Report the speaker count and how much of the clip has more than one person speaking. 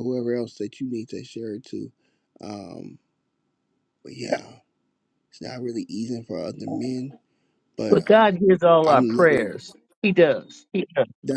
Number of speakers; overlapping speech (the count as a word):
two, about 8%